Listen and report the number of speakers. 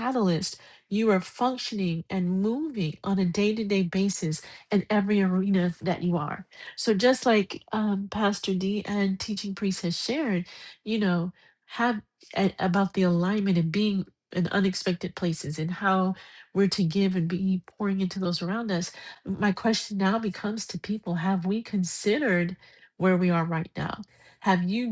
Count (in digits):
1